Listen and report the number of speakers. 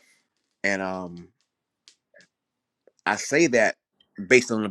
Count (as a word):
one